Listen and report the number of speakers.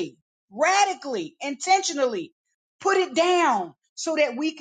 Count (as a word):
one